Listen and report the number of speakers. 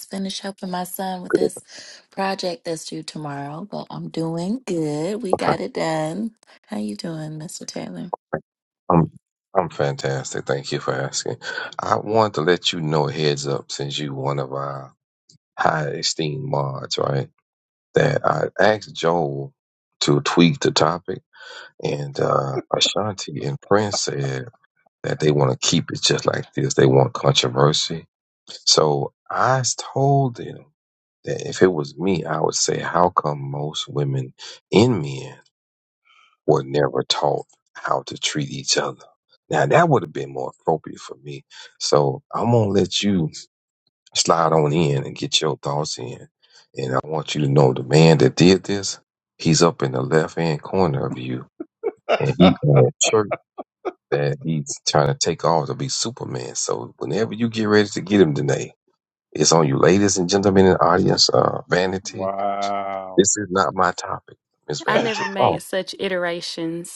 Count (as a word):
four